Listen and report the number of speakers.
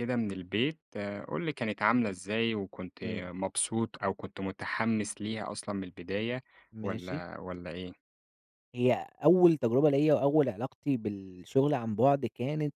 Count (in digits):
2